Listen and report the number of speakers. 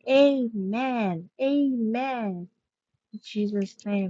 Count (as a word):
one